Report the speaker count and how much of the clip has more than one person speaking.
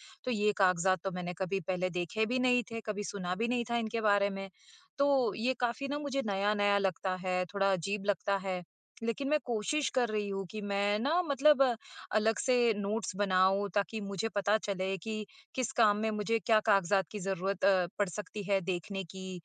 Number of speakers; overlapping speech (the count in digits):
1, no overlap